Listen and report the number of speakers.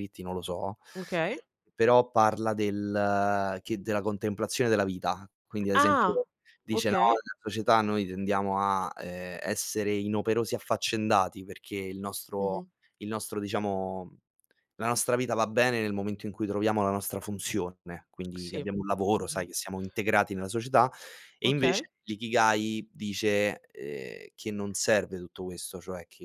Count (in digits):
2